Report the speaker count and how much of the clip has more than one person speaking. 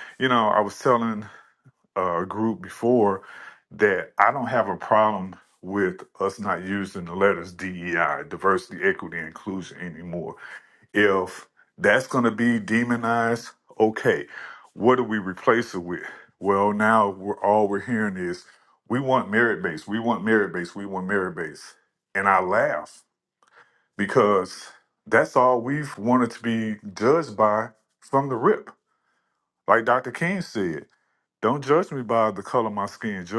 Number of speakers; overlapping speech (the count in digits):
1, no overlap